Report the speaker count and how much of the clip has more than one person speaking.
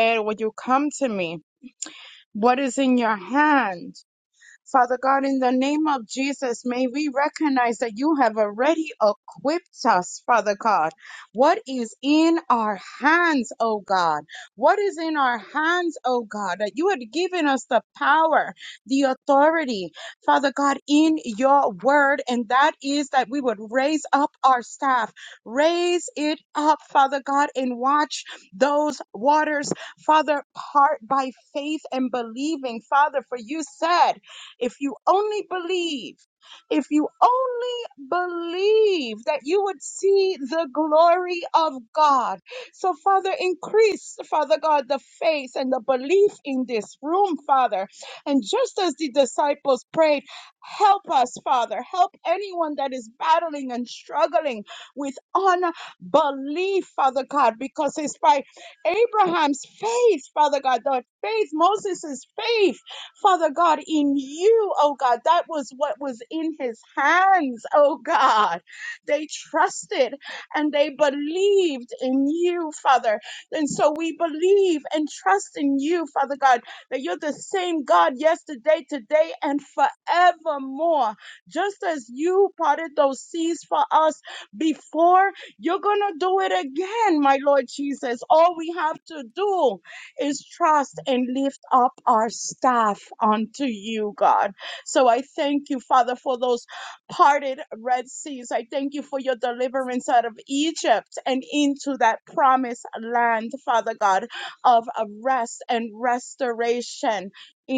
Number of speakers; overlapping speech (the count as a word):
one, no overlap